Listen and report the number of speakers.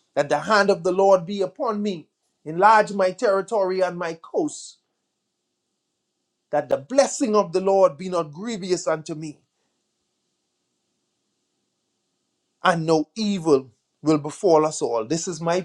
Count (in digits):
1